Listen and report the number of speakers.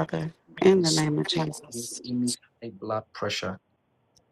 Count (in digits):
2